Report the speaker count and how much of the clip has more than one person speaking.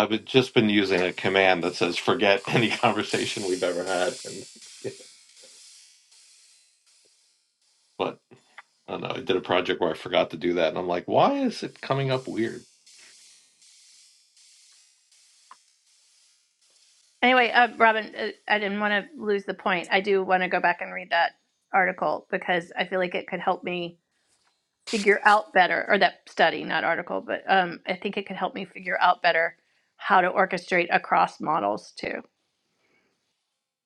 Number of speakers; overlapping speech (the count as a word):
two, no overlap